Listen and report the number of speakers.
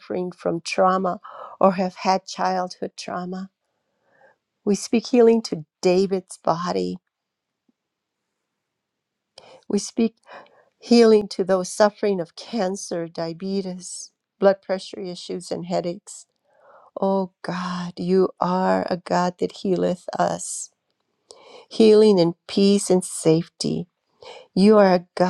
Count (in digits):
1